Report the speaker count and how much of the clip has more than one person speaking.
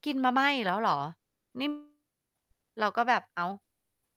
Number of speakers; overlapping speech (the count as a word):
one, no overlap